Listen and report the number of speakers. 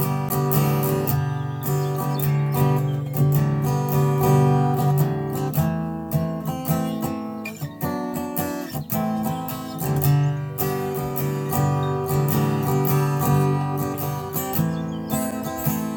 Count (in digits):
0